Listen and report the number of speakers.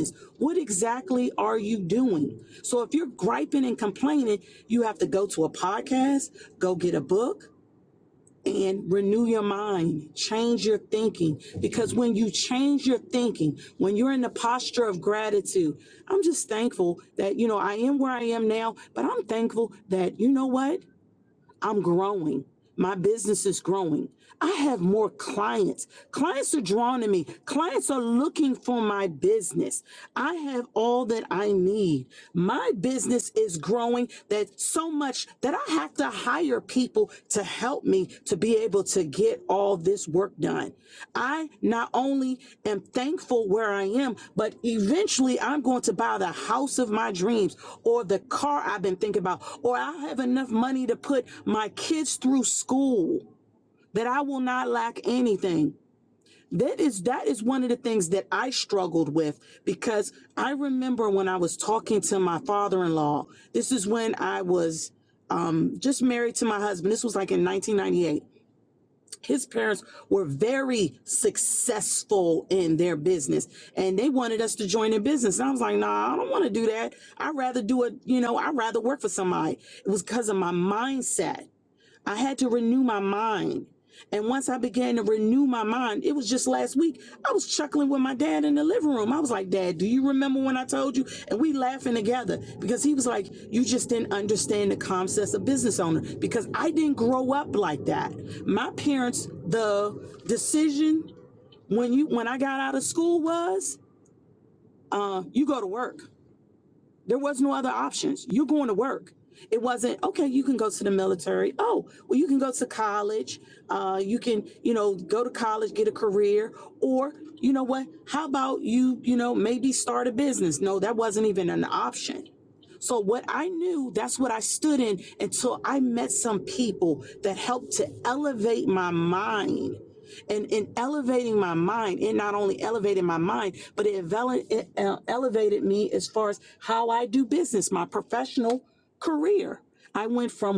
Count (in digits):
1